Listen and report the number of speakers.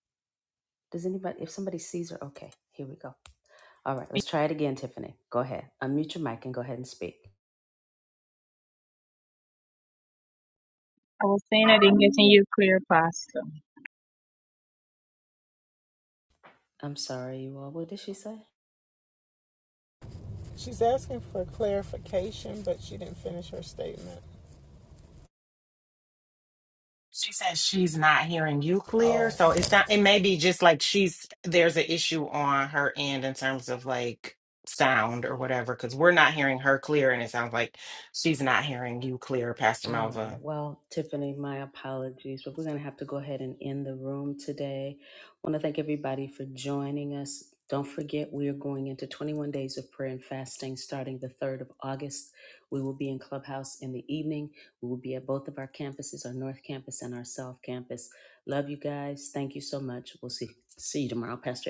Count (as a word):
four